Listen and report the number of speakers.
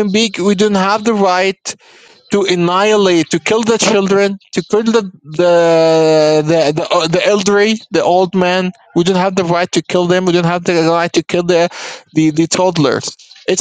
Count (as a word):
one